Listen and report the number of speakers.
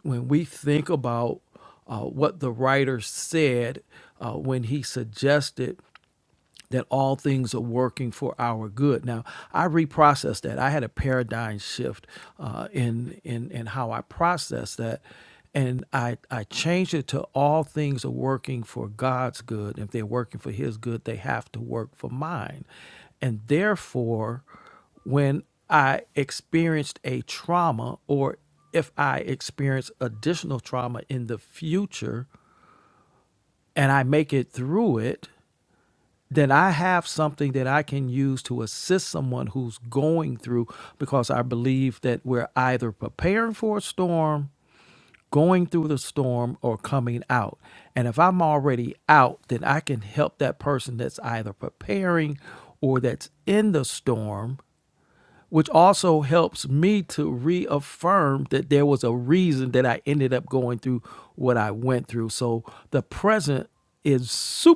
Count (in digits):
1